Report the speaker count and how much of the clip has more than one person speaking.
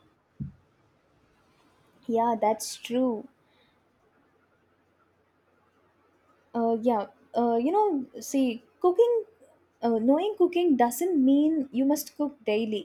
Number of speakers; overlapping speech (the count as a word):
one, no overlap